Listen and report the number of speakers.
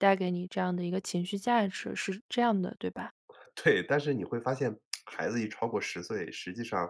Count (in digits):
2